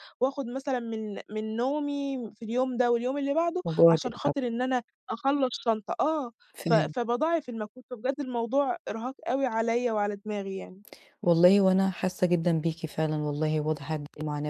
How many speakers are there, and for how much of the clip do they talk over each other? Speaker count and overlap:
2, about 7%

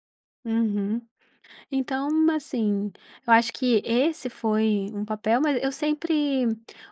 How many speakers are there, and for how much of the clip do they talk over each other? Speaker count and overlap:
1, no overlap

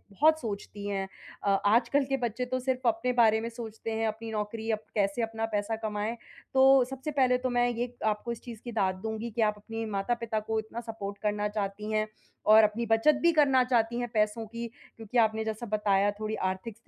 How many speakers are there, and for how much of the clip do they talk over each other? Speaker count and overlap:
1, no overlap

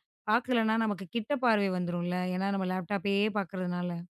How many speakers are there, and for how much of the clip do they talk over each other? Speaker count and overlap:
1, no overlap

